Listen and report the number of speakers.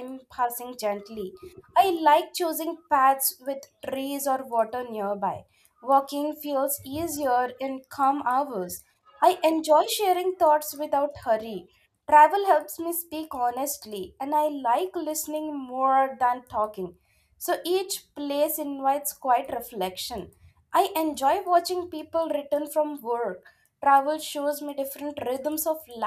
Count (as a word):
one